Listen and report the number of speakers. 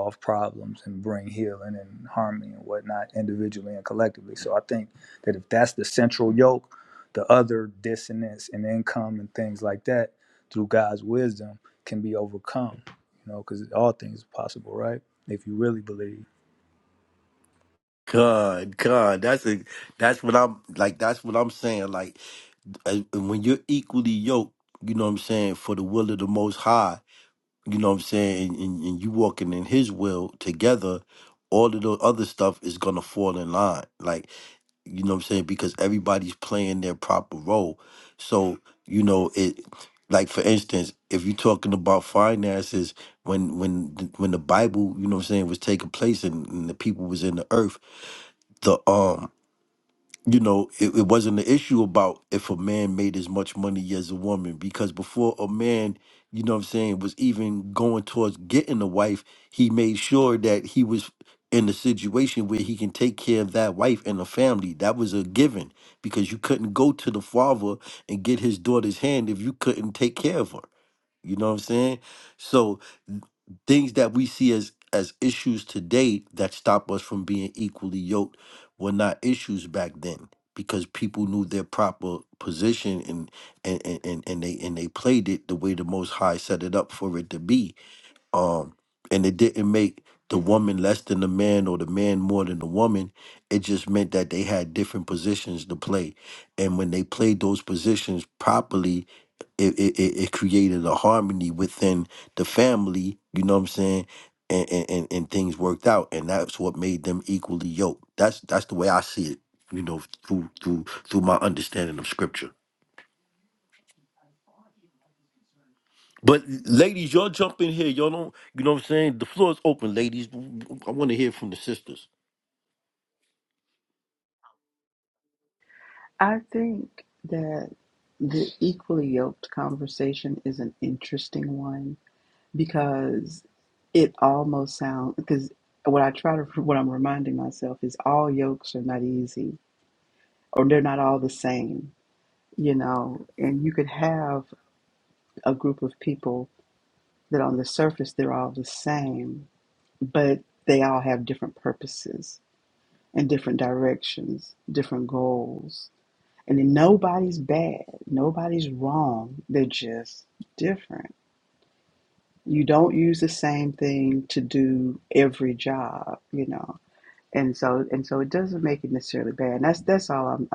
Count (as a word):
three